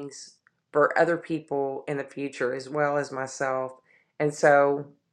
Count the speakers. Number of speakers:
1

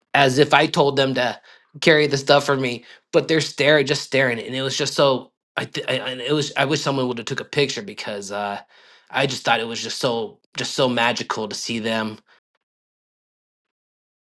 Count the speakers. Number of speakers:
1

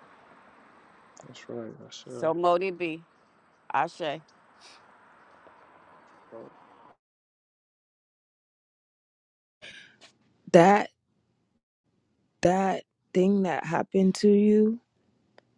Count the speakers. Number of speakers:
3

